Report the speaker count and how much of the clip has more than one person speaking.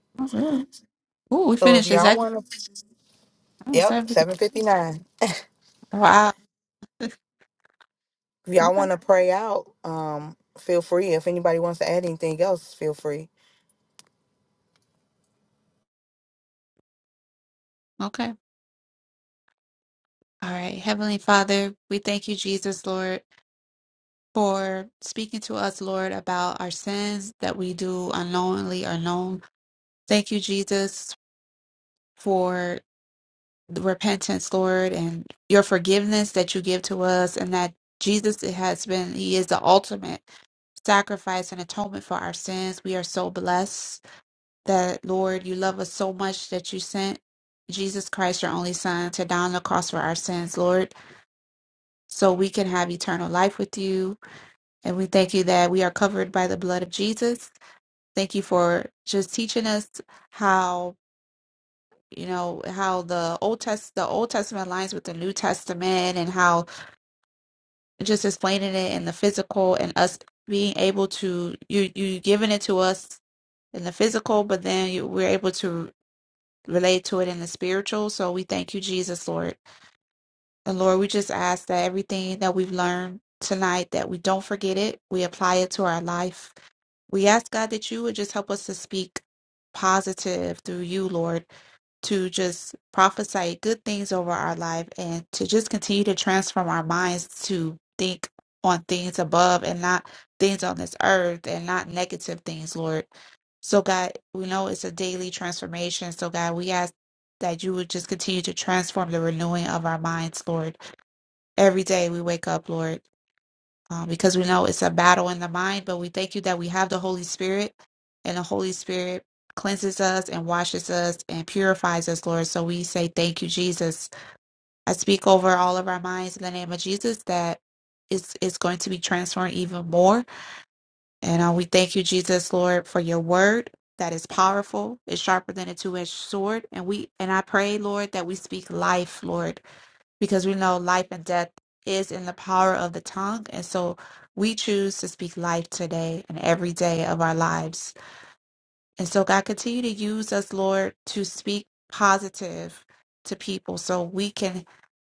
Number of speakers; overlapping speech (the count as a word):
two, about 1%